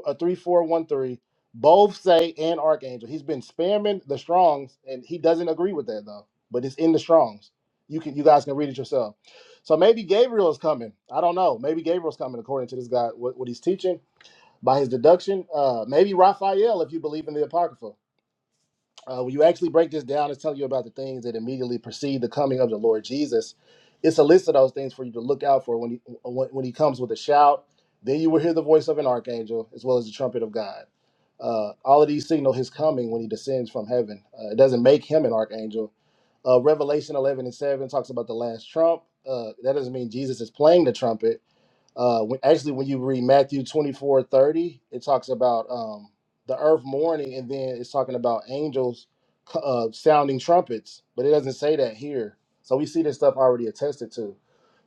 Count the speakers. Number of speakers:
one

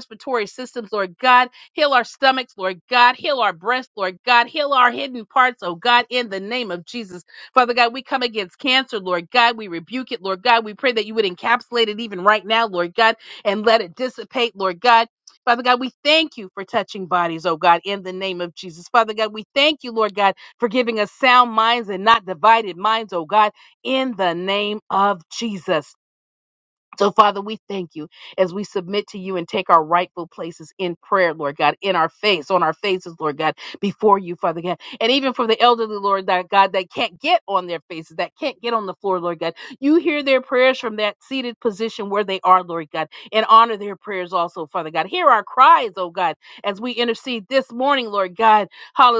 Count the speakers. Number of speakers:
one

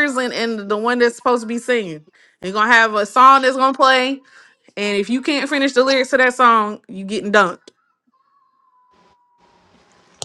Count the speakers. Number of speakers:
one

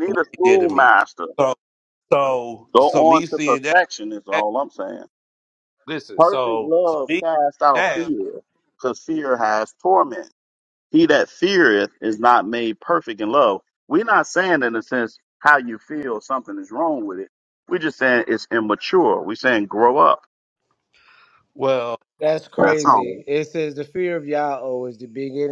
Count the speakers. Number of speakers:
three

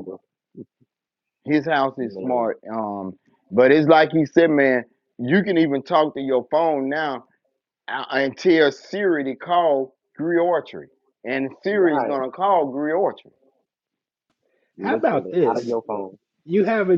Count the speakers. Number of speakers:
three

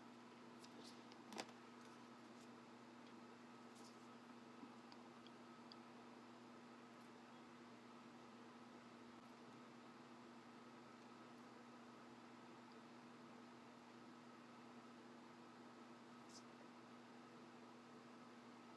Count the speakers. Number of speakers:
zero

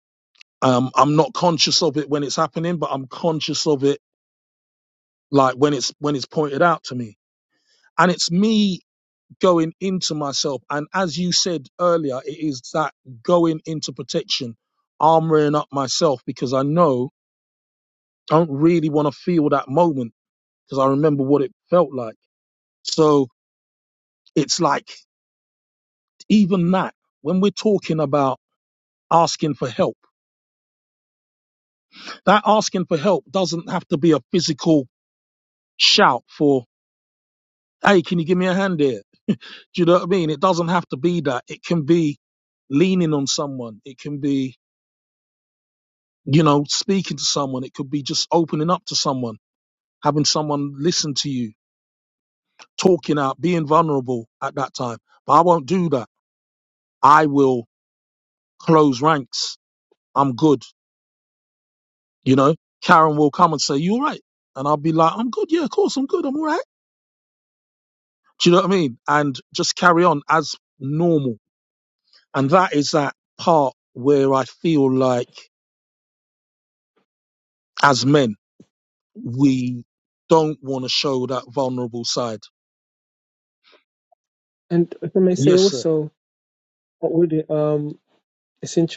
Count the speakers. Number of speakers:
two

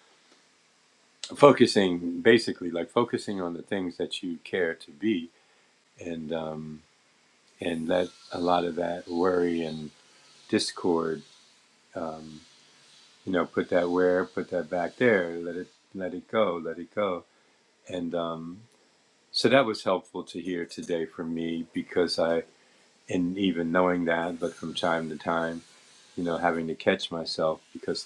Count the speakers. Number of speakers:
one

